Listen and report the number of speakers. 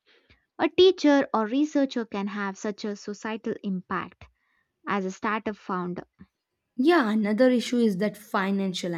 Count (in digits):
2